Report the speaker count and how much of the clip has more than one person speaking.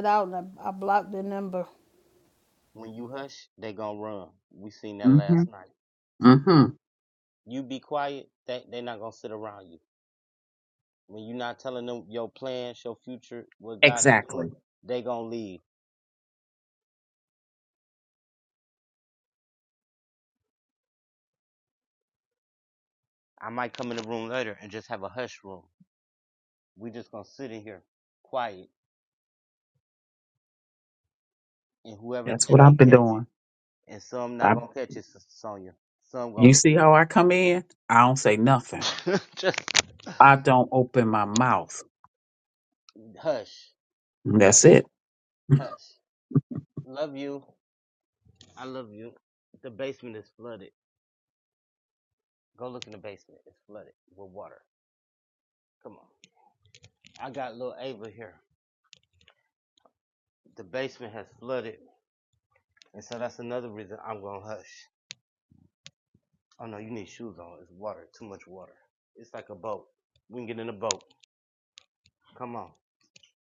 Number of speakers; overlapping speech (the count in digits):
3, about 4%